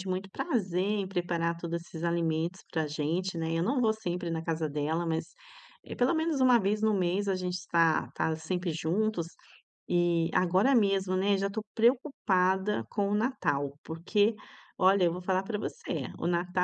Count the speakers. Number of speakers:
1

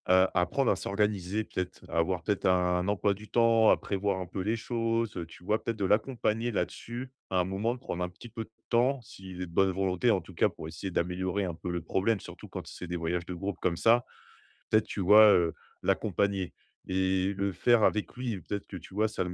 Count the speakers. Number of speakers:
1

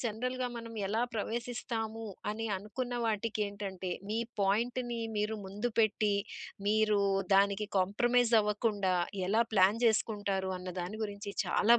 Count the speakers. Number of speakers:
1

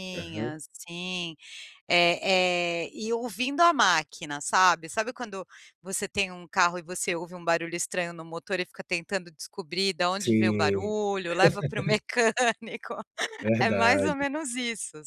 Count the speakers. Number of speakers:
2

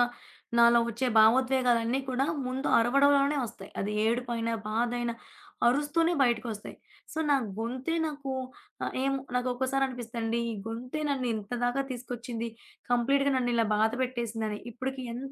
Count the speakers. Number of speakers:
1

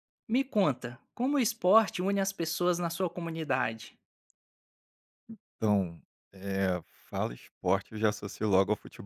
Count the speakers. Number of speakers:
2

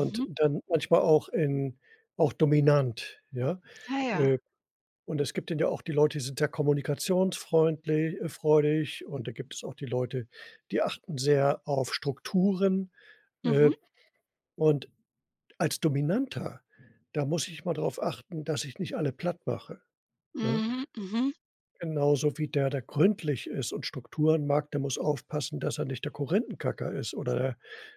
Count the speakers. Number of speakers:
2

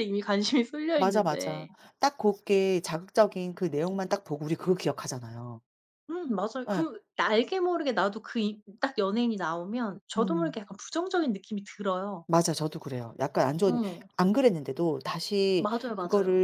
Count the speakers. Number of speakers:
2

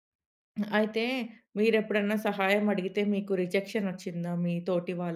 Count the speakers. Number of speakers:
1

